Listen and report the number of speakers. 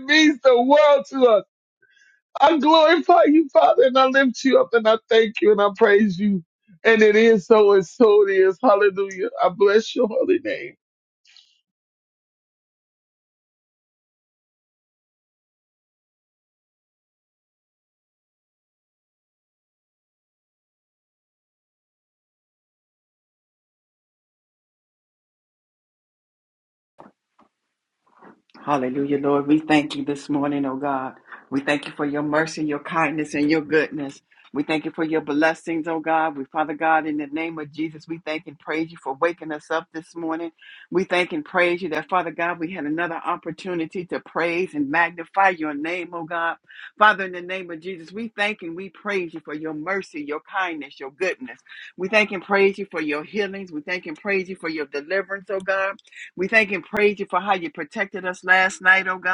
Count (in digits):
2